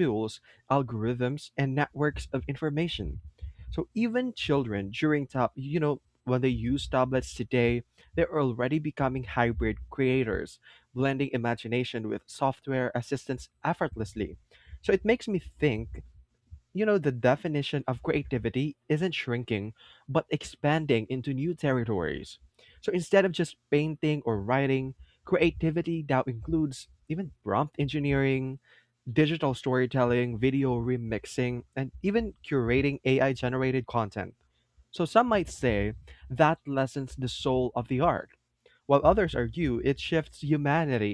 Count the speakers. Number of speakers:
1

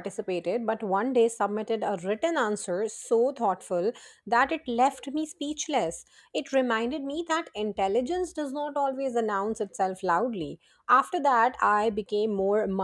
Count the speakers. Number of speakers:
1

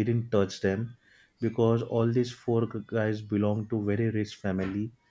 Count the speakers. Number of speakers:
1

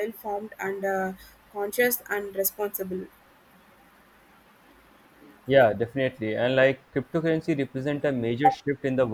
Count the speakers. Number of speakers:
2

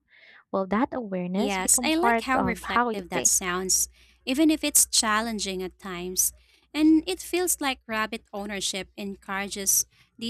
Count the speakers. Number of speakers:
2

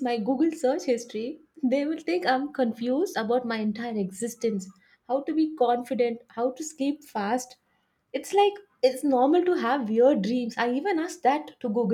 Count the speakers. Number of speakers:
1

